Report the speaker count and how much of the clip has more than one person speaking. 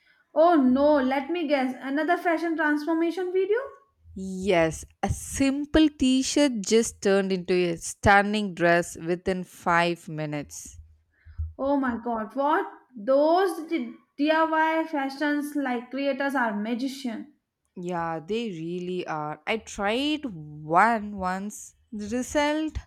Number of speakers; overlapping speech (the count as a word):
two, no overlap